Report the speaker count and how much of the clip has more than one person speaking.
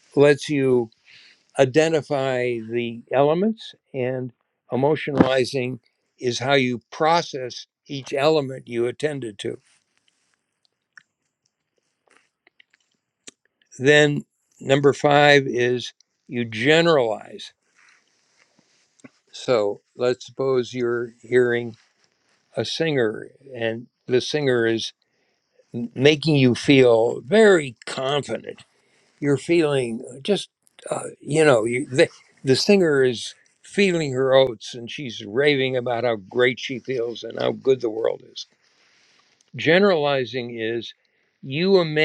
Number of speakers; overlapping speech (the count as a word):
one, no overlap